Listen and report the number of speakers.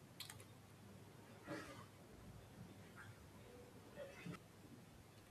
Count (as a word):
zero